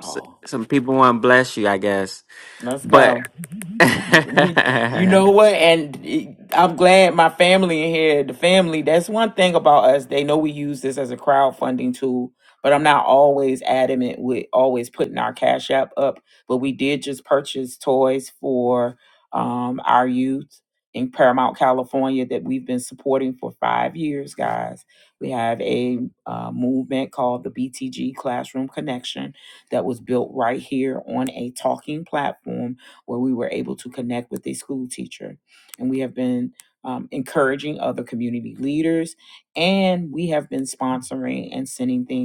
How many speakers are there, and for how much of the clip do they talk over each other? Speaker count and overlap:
2, about 1%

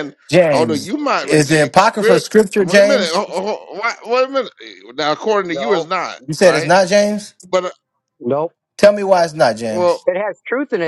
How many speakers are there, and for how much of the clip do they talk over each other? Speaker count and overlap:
3, about 25%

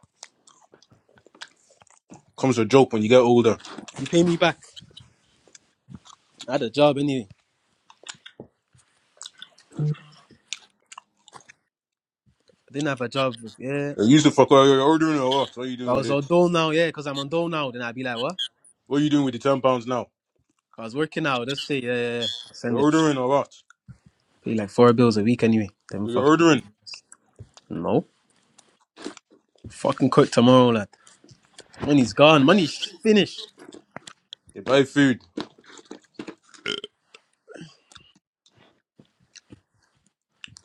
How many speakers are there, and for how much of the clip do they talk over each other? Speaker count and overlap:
2, about 2%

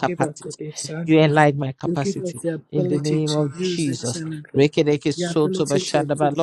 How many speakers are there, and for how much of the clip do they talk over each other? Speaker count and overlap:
2, about 65%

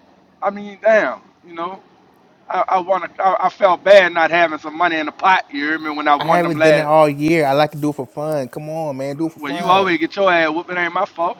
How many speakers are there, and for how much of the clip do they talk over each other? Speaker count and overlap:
2, about 11%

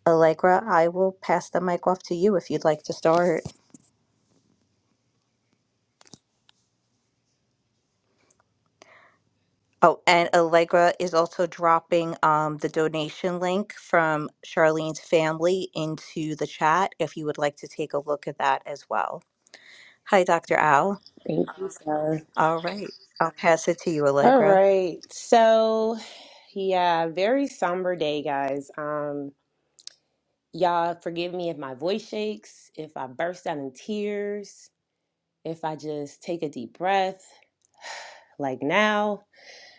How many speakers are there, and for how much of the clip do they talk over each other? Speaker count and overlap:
2, about 1%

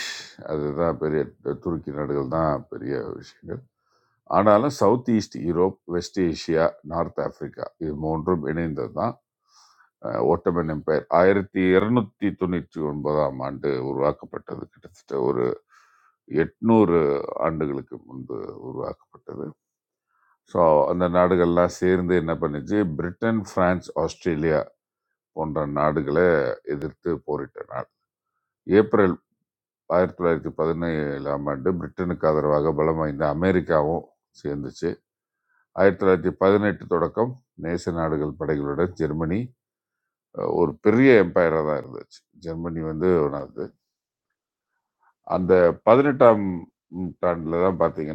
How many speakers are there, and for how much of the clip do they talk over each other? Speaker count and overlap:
1, no overlap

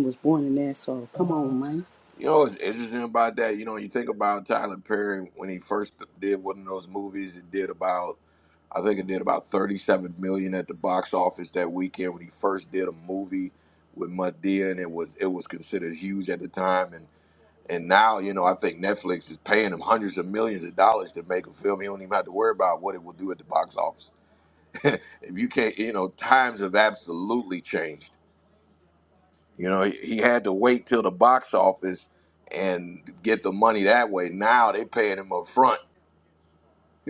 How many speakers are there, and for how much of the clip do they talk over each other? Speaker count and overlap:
2, no overlap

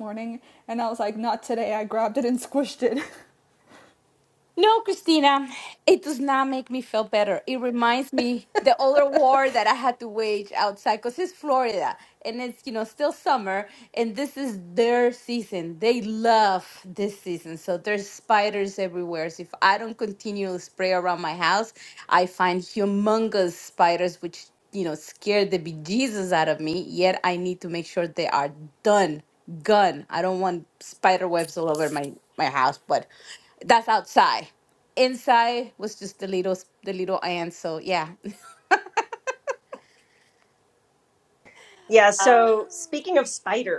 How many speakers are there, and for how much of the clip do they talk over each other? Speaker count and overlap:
3, about 1%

